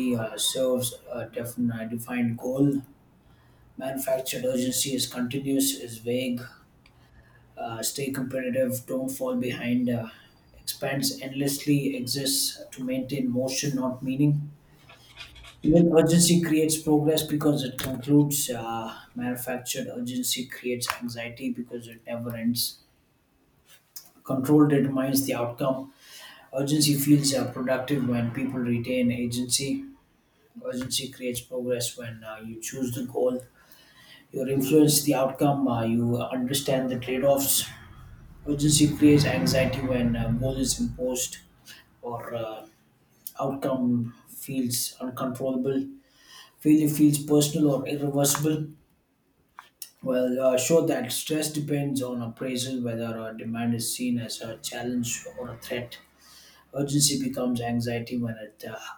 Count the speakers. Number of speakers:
one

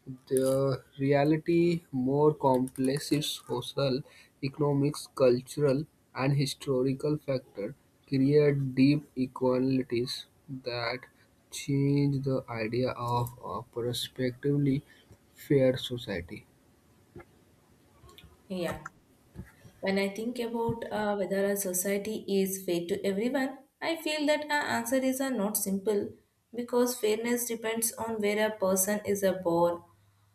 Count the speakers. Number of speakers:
two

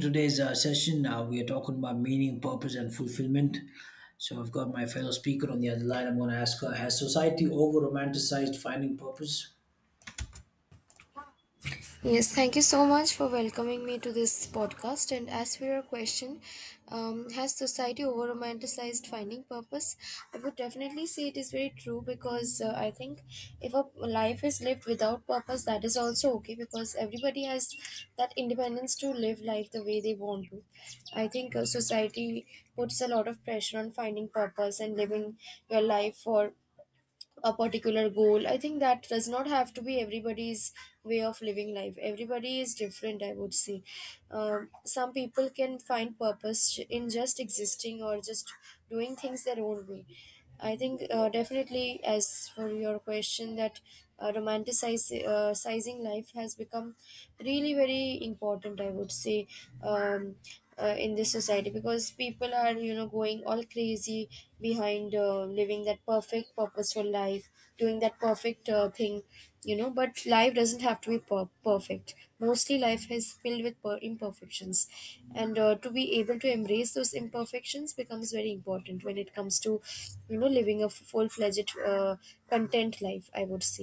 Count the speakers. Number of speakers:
two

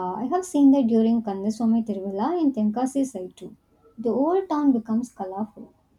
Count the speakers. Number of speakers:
one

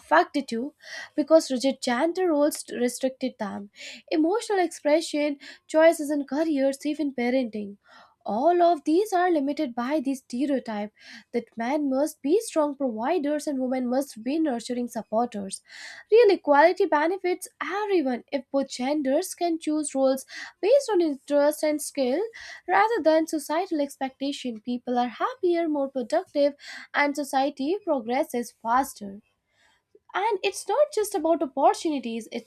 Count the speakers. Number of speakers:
one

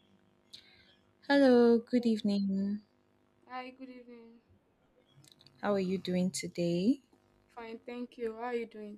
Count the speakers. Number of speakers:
two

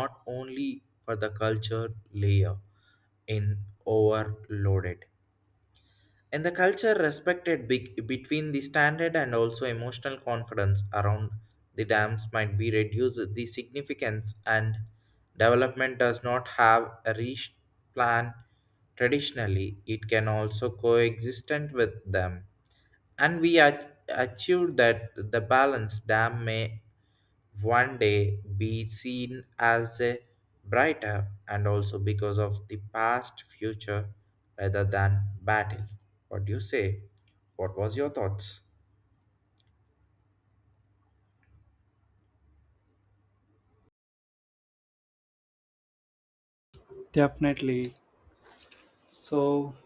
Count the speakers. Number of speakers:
two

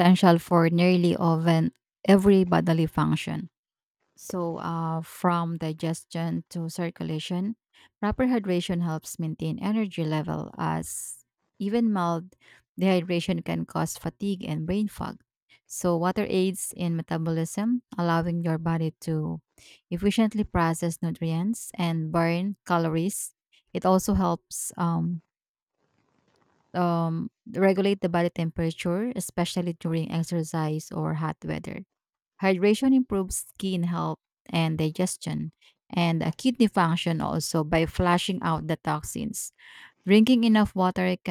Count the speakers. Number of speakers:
one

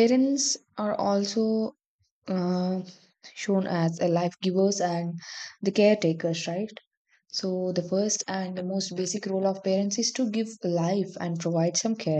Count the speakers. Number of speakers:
one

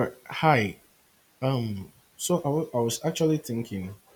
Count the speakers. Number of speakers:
one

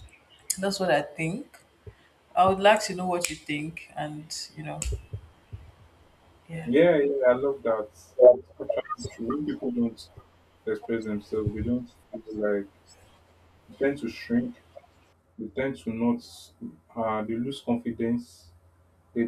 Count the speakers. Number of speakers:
two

